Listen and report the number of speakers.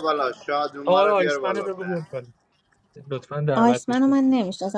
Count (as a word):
three